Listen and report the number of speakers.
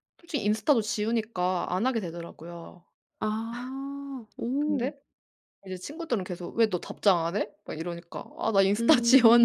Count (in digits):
2